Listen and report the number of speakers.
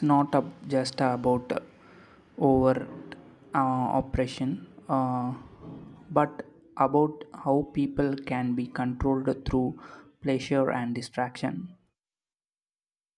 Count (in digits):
1